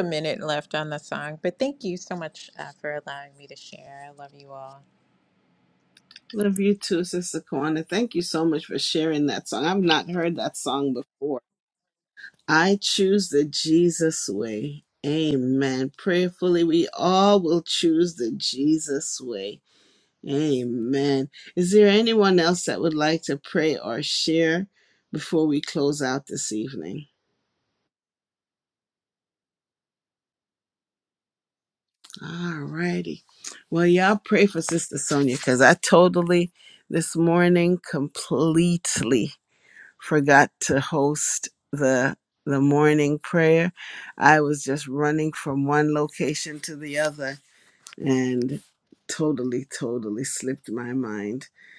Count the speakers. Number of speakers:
2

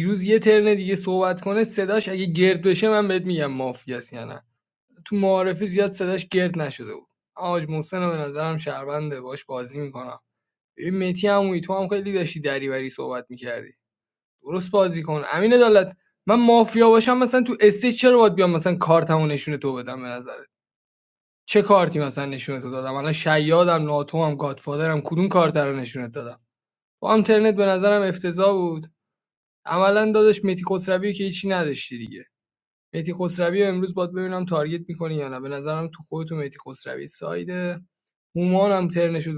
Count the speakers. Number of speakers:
1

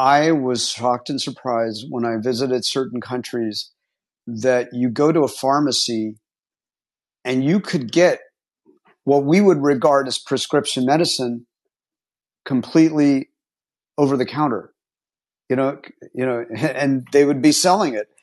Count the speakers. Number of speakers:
1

